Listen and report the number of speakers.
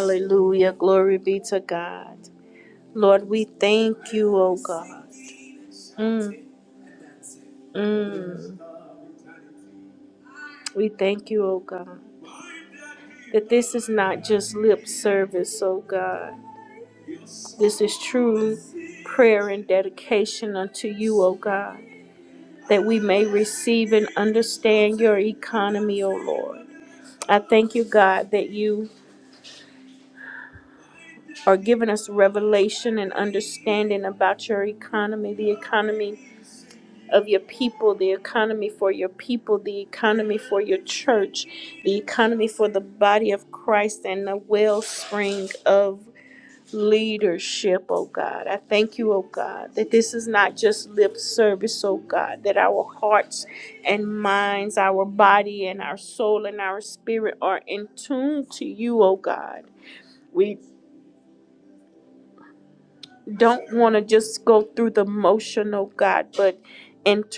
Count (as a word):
one